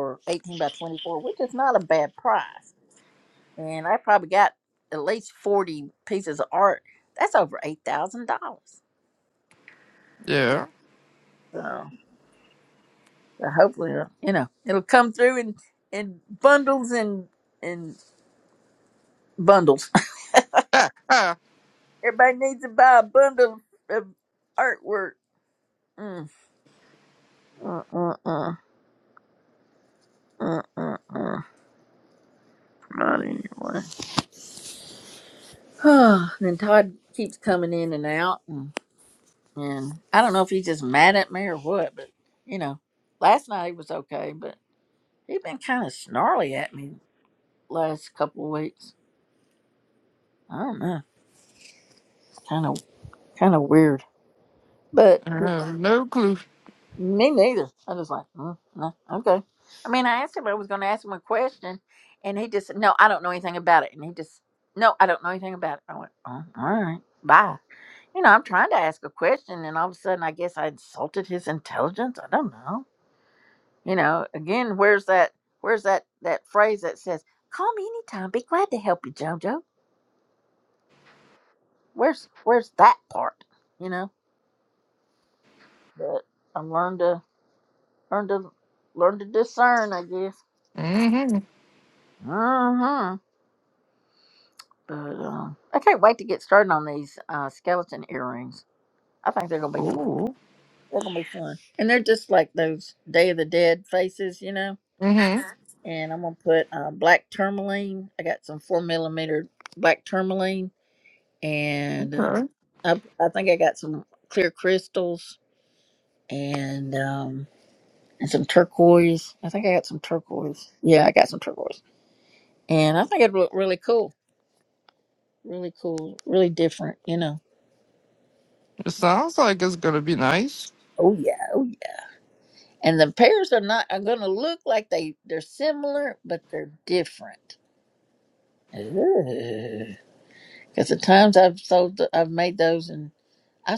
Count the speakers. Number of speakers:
two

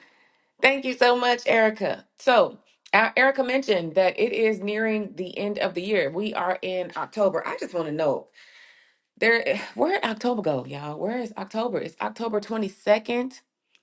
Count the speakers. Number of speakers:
one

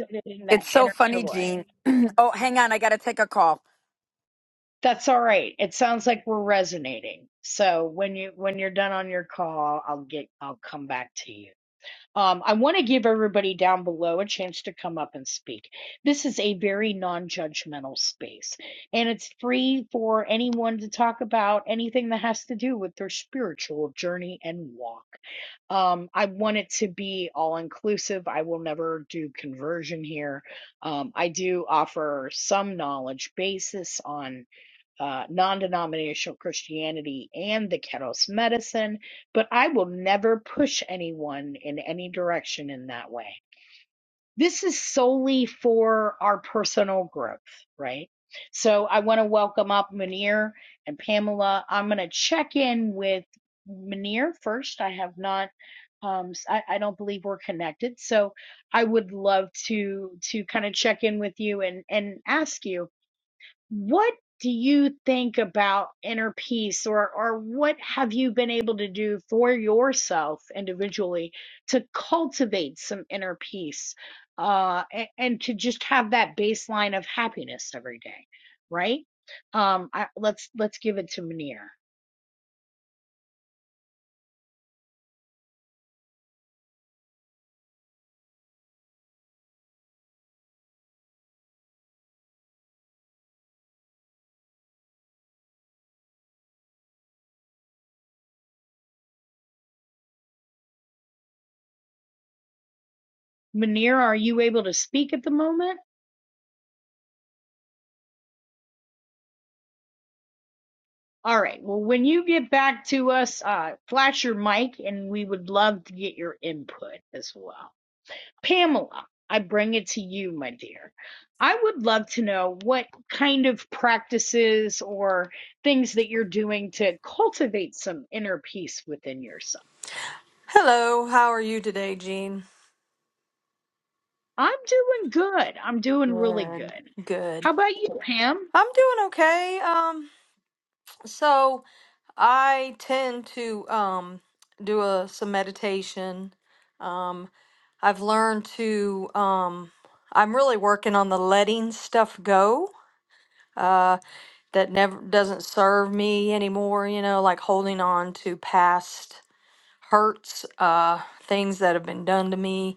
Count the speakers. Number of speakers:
three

